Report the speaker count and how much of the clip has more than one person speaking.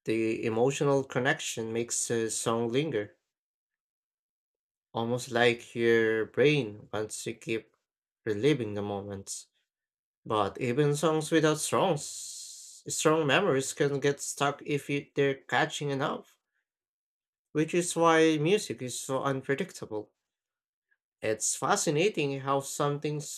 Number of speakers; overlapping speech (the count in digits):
1, no overlap